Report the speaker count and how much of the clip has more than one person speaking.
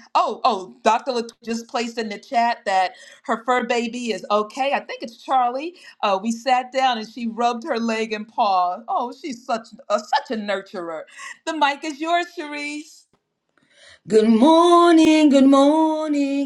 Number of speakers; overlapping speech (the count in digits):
2, no overlap